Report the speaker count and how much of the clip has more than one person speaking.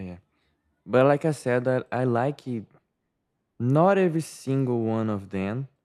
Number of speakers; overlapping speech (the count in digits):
1, no overlap